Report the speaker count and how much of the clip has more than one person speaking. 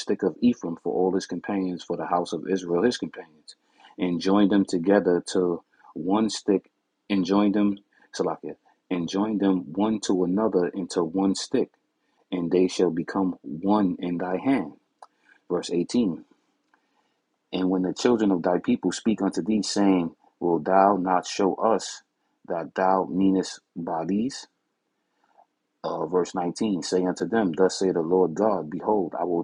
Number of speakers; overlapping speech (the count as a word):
one, no overlap